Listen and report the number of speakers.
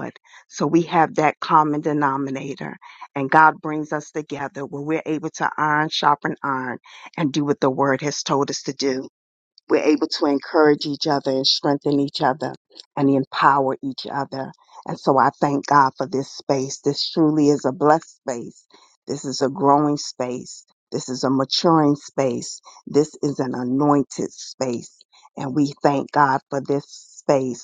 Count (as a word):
one